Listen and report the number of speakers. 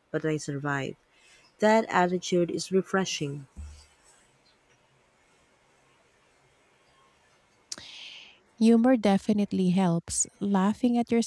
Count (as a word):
two